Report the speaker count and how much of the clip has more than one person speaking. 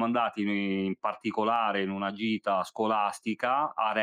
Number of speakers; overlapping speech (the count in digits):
1, no overlap